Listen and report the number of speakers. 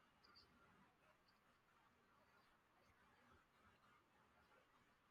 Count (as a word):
zero